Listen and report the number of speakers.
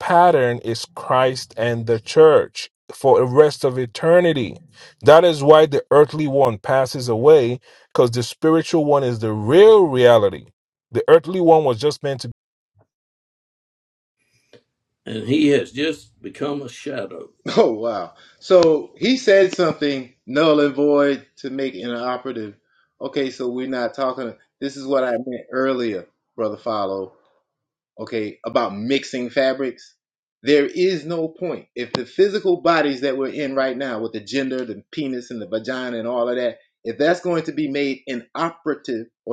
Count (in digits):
3